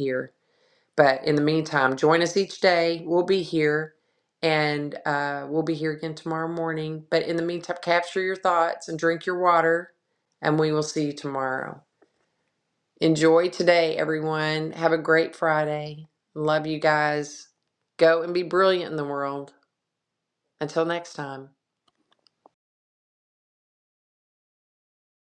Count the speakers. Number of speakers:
1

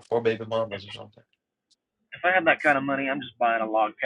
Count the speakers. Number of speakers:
2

